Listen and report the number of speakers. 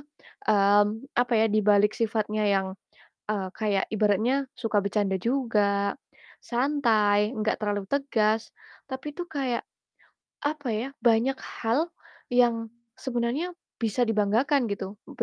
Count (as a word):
one